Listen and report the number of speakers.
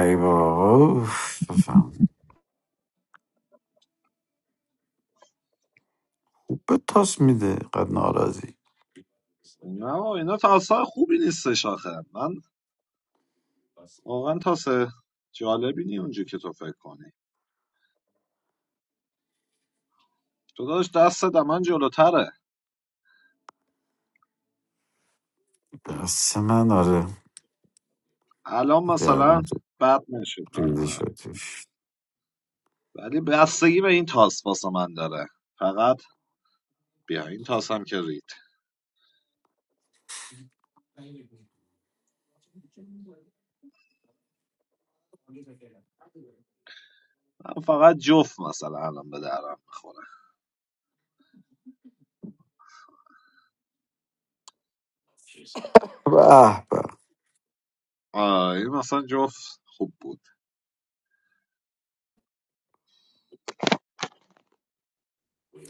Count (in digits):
2